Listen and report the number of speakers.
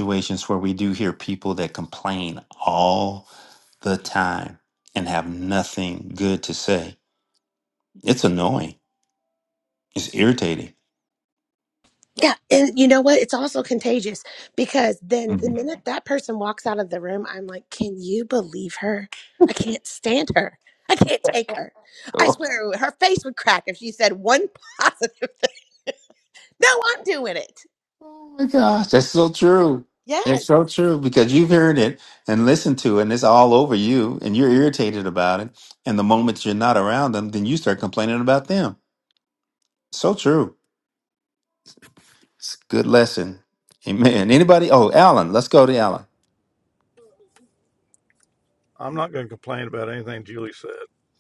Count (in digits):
3